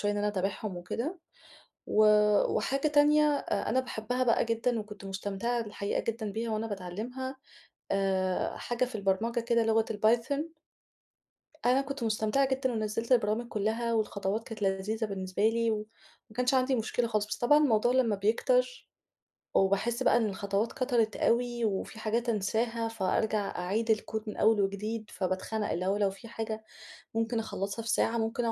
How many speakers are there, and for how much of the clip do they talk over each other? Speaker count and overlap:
one, no overlap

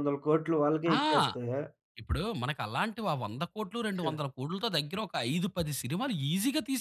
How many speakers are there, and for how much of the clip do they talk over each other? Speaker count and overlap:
two, about 2%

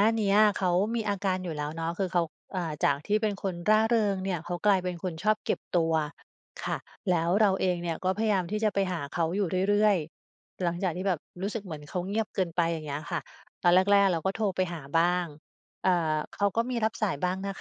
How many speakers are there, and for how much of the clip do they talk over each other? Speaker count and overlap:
one, no overlap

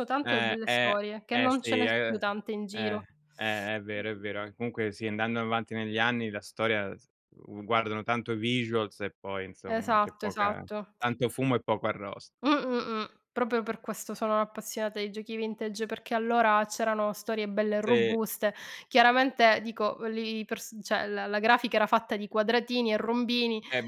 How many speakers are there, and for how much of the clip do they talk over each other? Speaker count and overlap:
two, about 14%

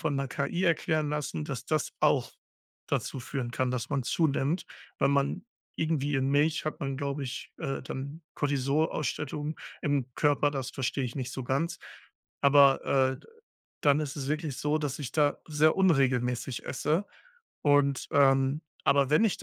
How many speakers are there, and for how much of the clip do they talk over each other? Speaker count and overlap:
one, no overlap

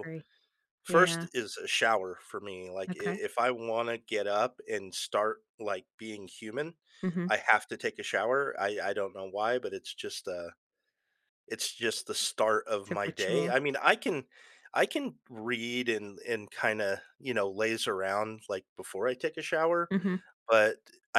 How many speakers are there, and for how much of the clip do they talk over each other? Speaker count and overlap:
two, about 7%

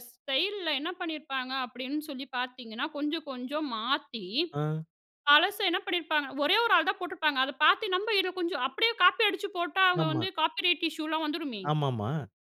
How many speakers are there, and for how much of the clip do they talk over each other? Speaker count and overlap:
two, about 2%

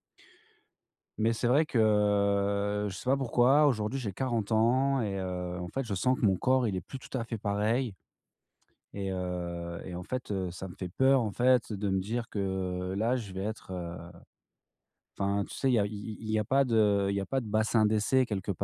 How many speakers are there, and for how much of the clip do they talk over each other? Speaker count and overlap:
one, no overlap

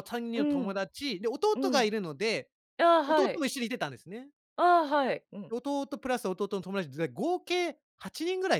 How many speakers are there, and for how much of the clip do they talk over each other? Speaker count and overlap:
two, about 11%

